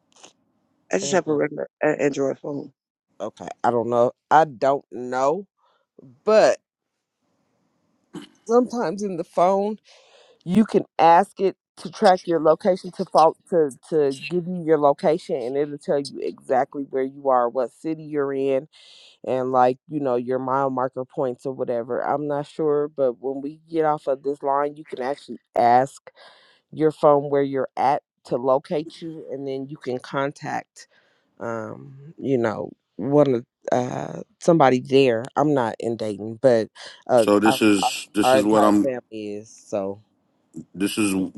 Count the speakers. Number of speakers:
3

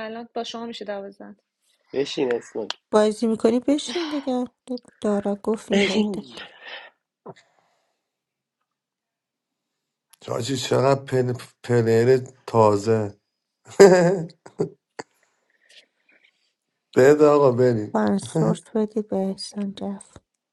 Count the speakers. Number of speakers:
4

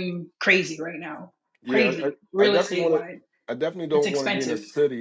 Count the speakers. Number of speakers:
2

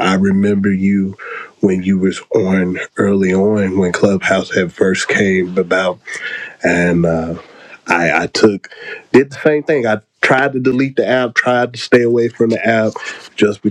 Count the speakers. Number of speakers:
1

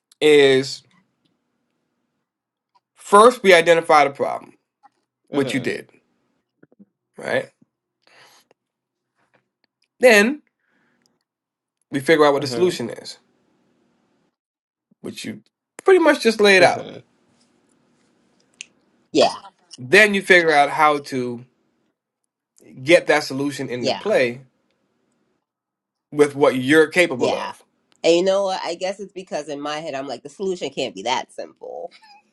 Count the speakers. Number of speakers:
2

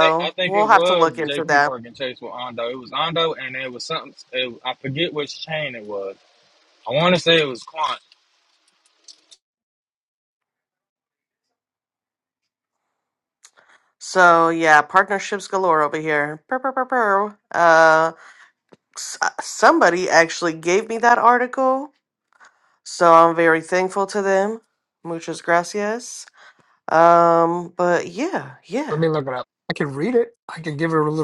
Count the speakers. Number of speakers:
3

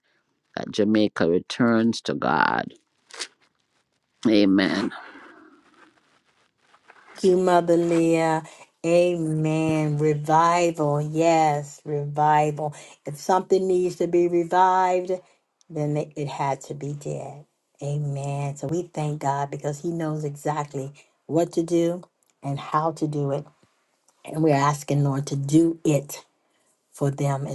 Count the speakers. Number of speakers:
2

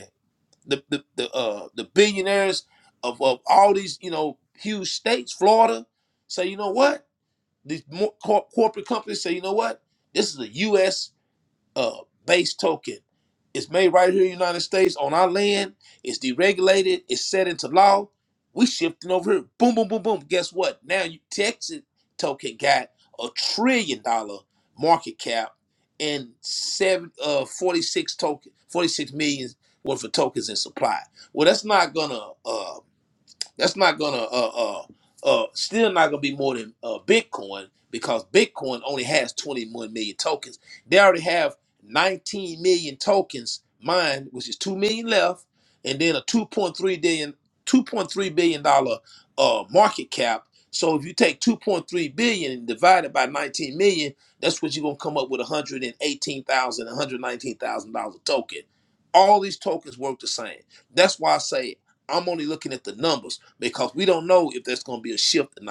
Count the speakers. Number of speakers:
1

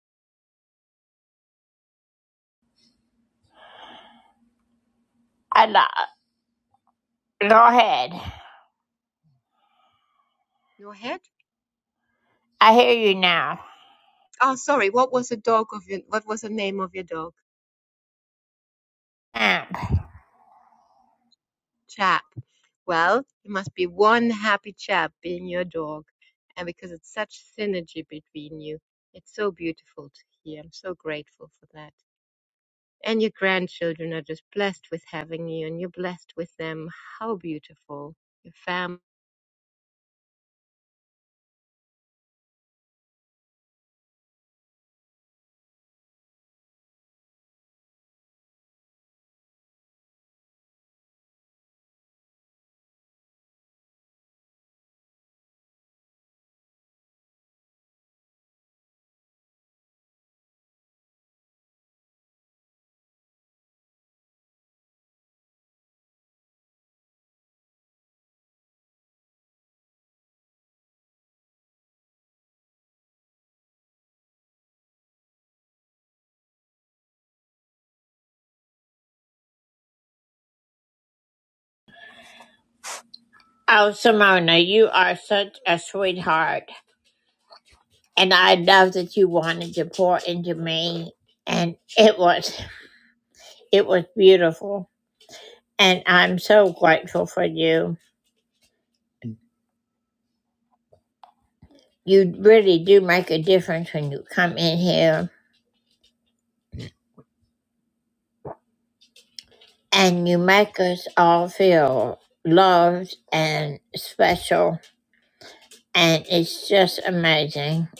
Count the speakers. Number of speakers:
2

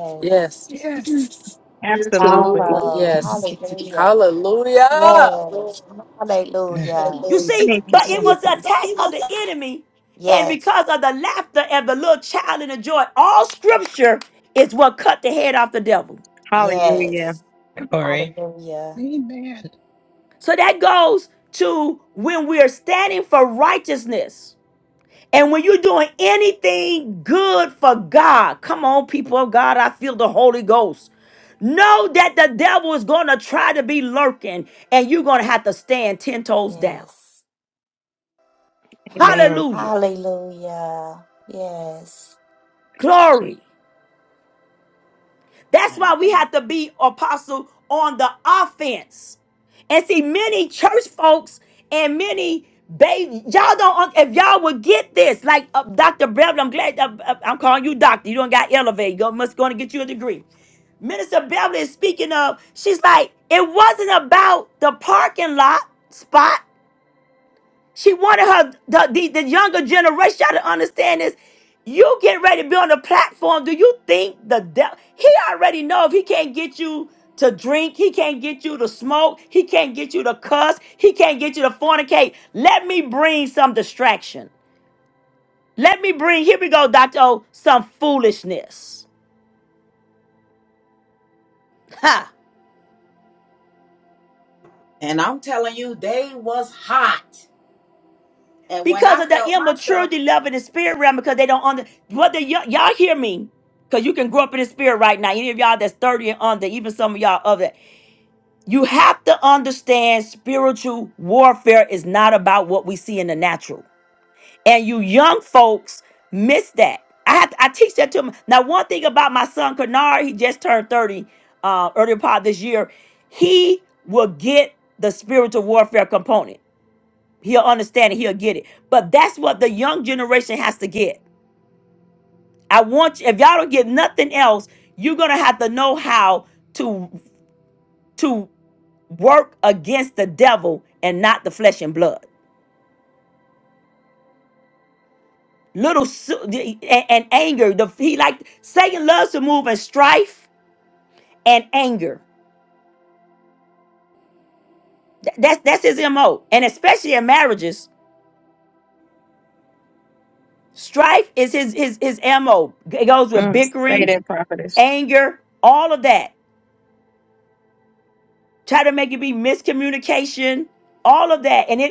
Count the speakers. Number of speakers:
6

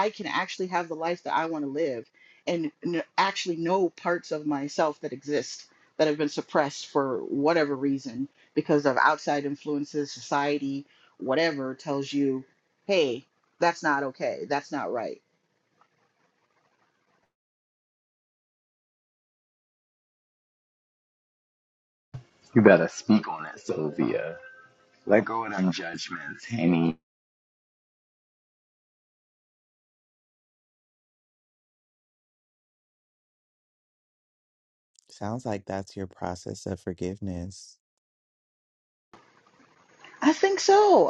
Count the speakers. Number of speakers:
3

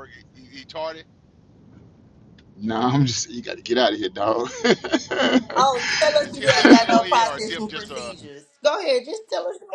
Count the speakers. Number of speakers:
3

